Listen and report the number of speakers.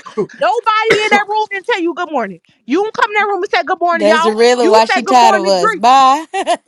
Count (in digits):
2